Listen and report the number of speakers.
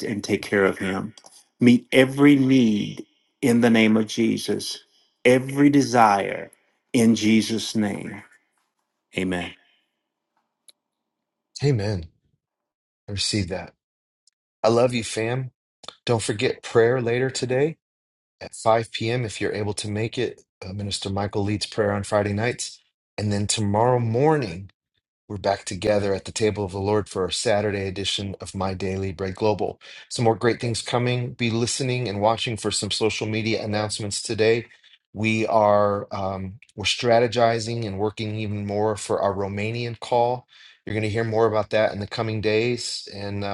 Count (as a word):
two